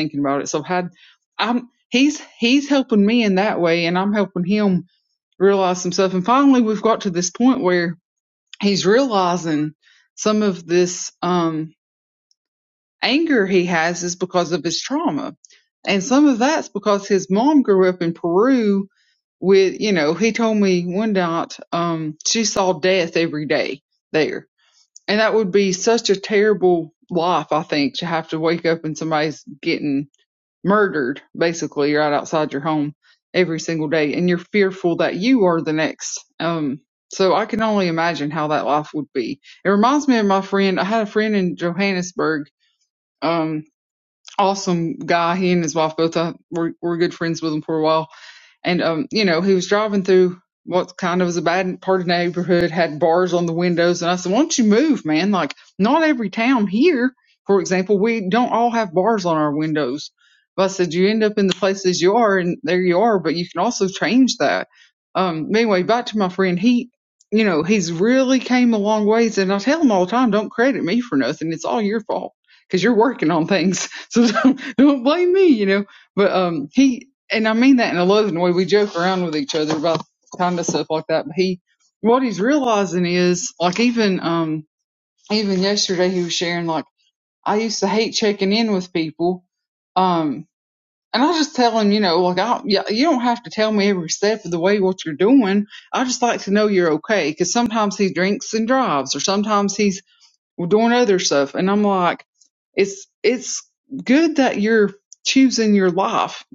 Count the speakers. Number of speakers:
1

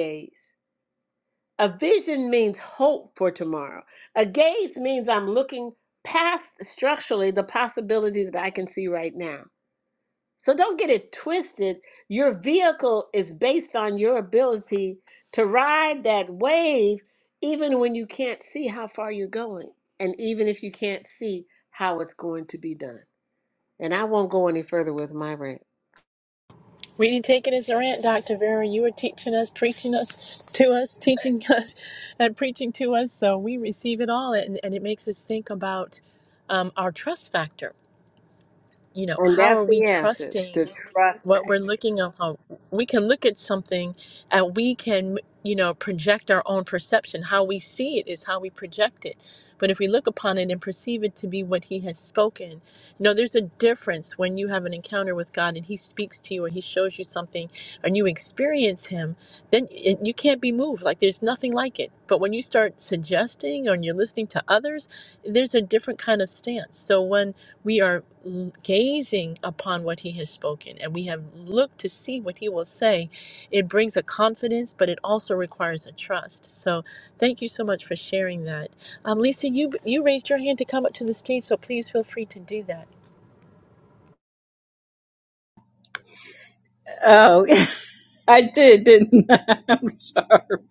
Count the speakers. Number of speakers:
3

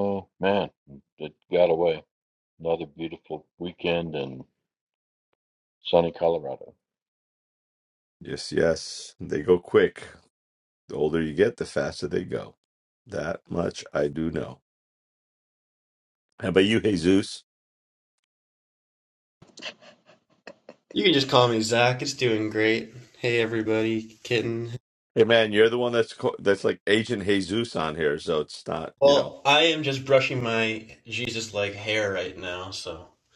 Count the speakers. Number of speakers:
3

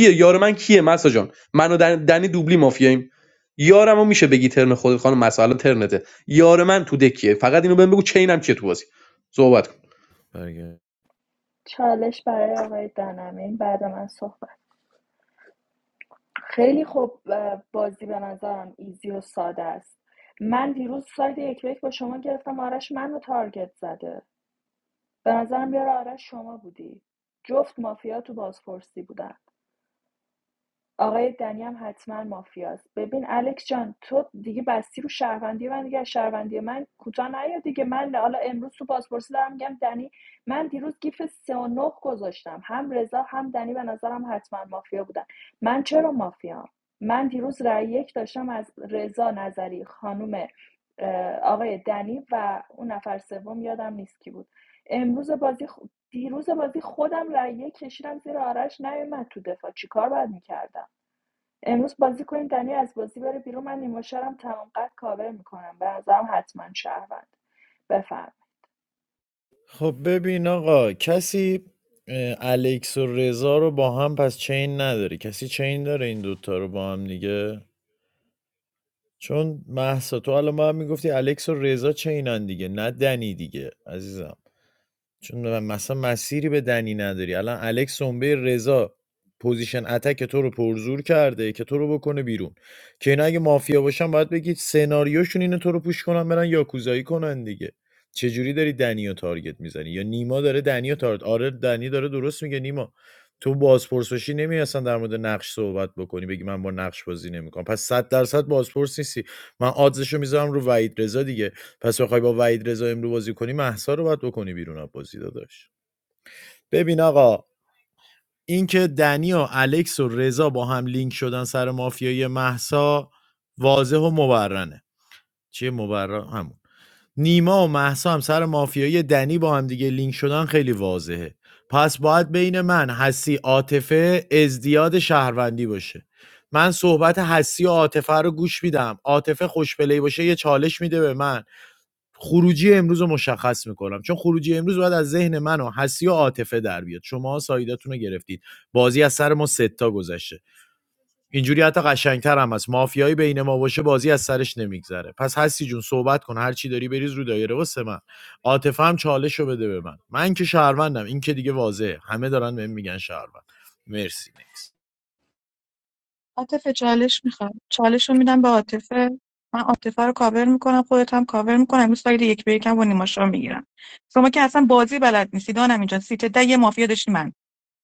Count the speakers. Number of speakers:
4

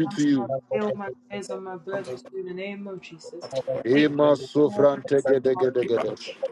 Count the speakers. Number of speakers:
2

